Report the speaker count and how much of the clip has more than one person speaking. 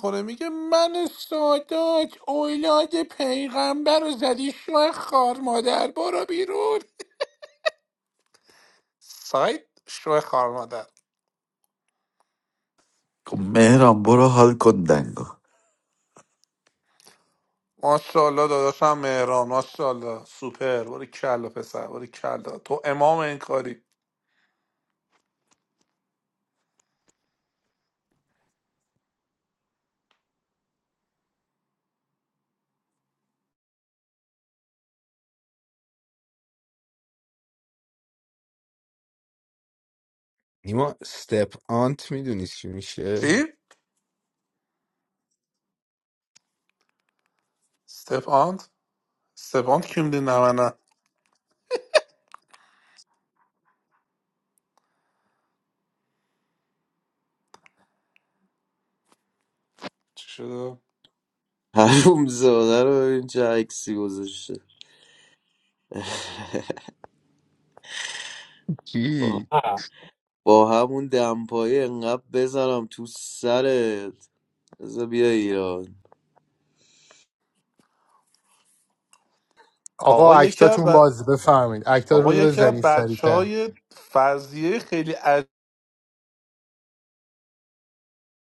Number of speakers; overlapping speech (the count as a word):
five, about 3%